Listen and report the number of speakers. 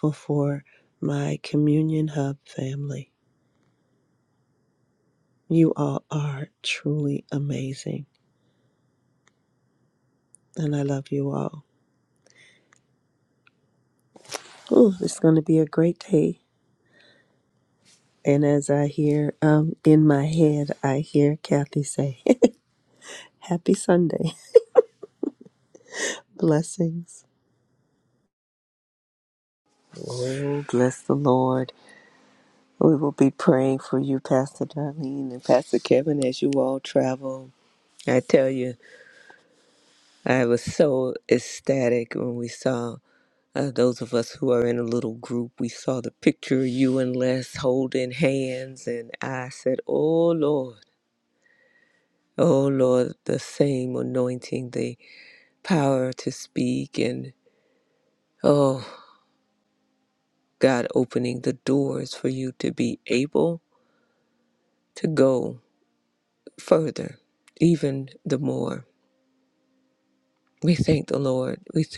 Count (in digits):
2